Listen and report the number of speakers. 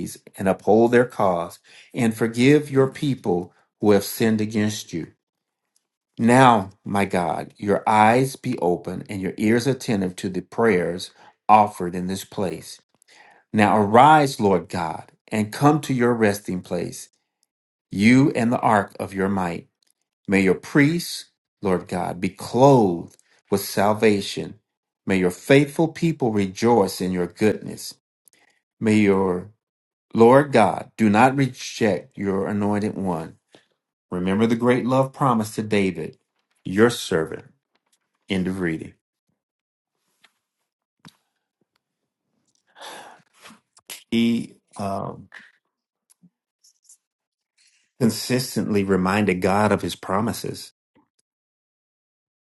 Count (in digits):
1